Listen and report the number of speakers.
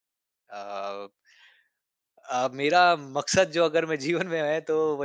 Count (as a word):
one